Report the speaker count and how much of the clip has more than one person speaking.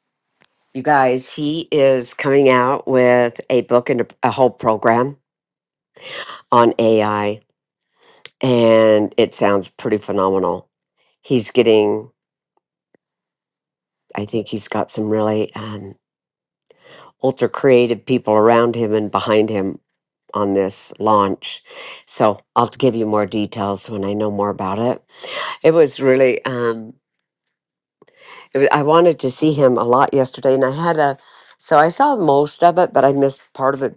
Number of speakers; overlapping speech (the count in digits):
1, no overlap